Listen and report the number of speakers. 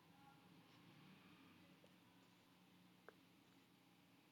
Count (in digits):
0